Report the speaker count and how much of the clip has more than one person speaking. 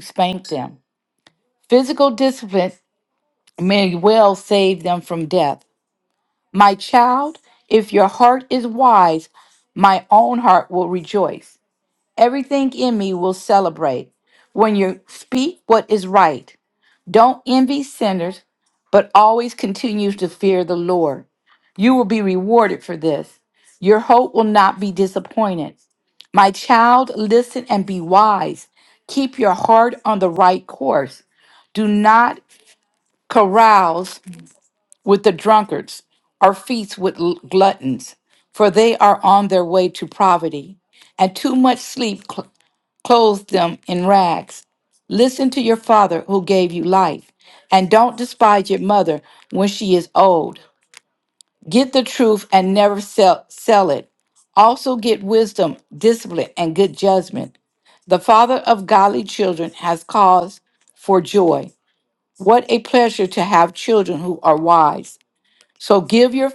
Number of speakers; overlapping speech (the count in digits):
1, no overlap